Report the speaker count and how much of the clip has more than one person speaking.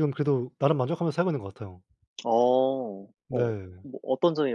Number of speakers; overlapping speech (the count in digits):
2, about 5%